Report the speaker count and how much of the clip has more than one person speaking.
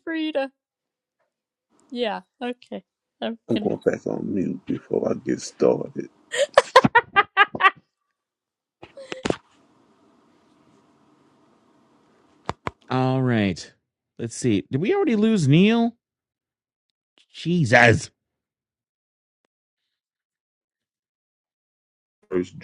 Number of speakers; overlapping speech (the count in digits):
3, no overlap